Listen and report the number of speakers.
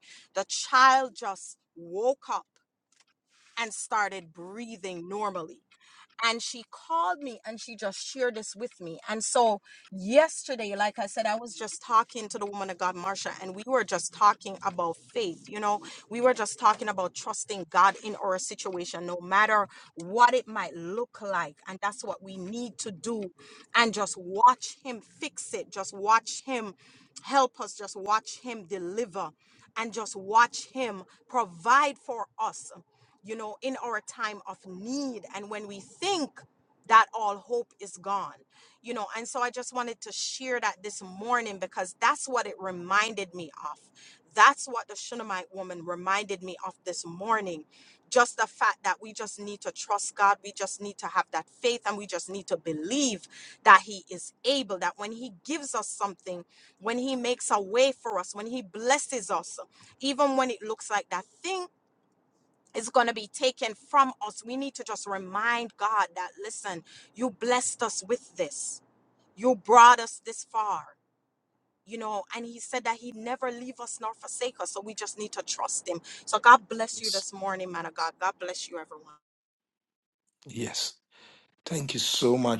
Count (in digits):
2